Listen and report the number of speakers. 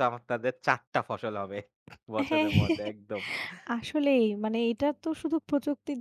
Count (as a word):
two